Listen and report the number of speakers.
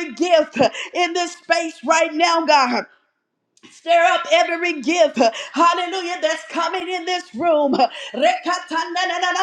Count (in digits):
1